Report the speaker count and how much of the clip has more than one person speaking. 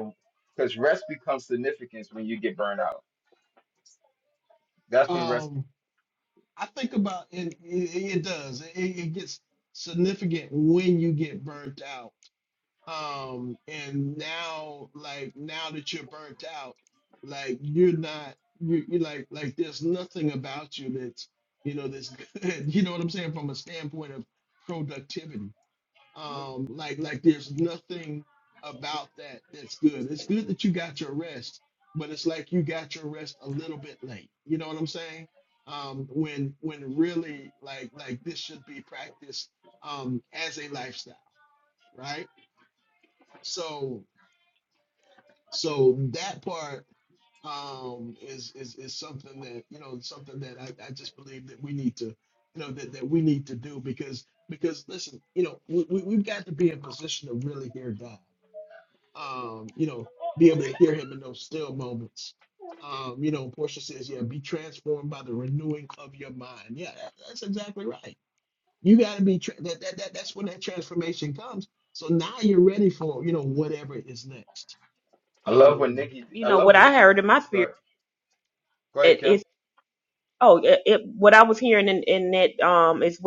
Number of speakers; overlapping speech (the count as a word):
three, about 2%